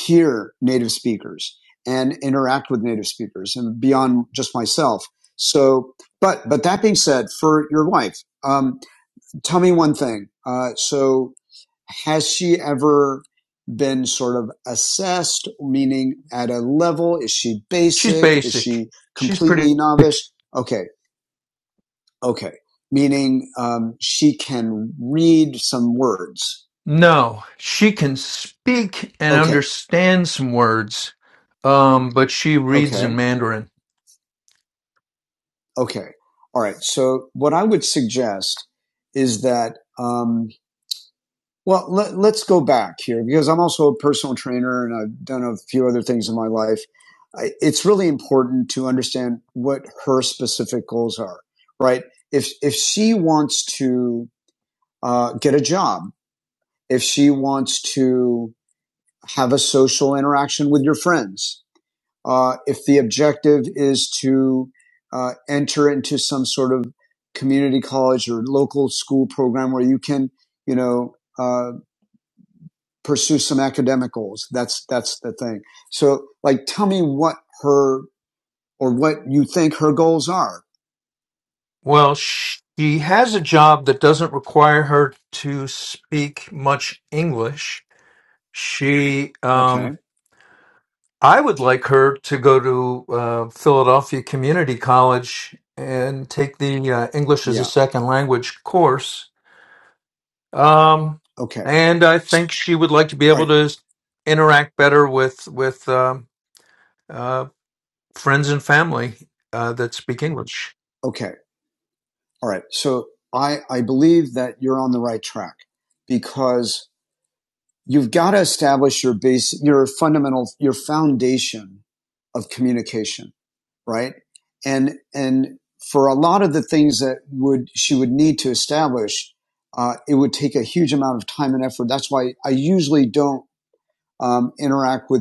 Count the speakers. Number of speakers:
2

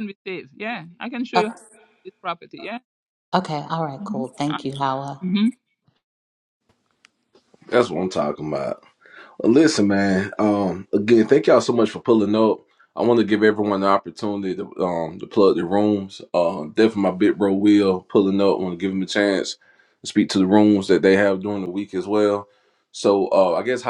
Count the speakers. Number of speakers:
3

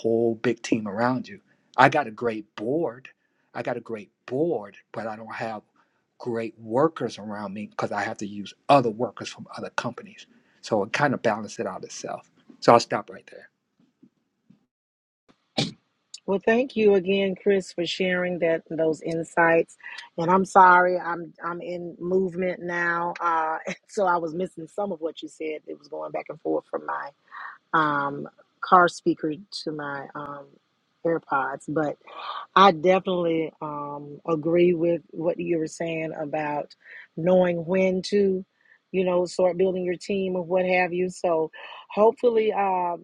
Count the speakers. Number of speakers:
2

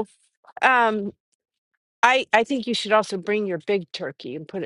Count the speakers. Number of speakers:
1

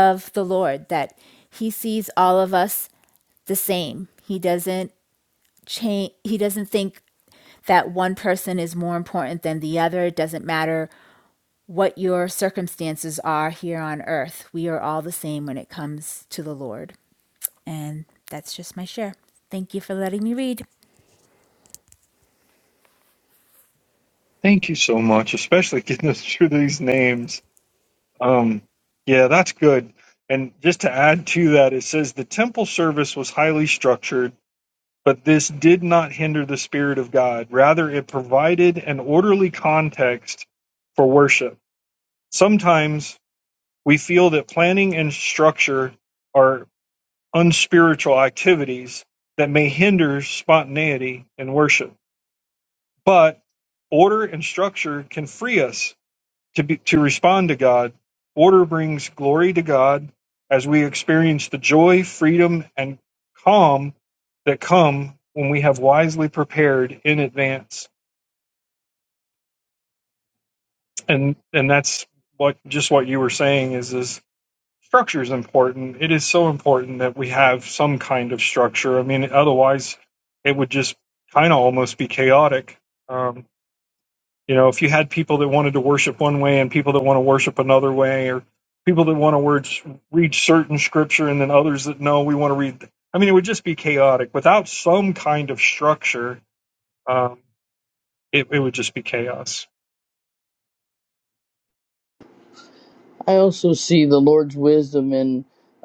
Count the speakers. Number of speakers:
3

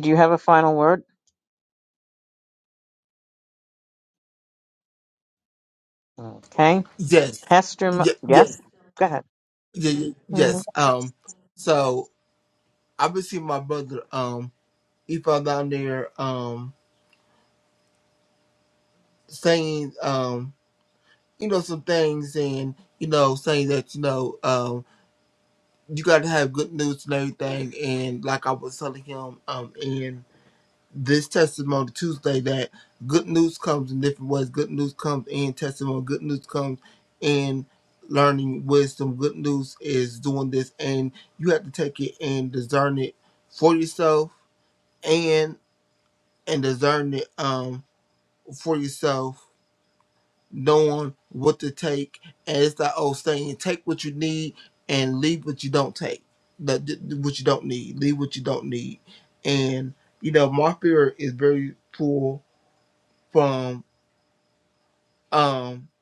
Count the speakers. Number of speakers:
2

